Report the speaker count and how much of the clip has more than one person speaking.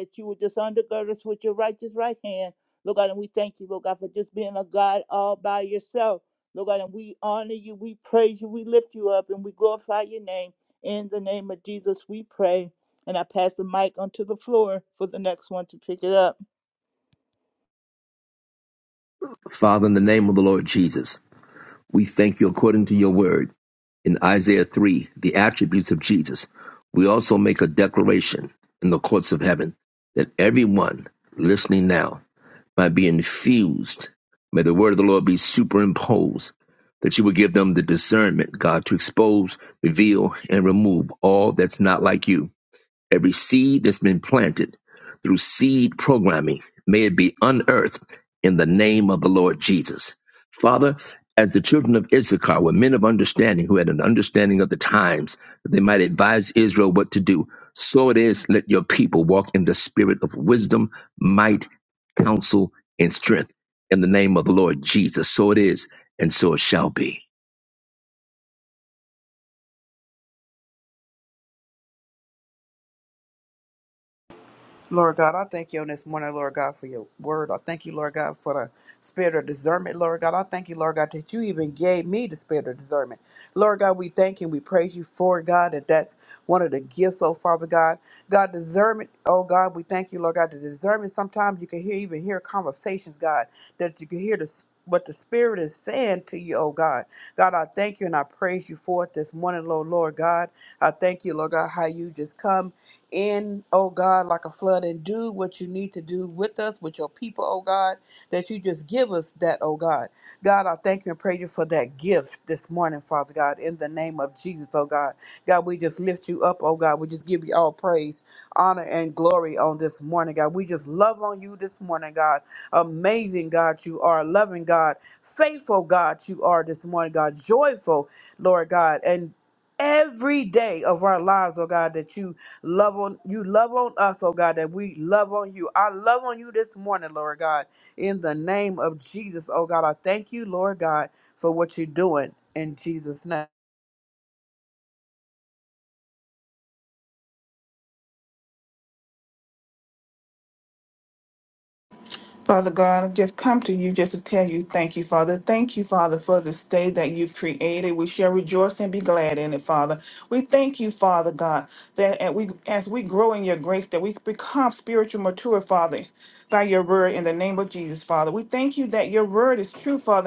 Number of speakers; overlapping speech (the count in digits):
4, no overlap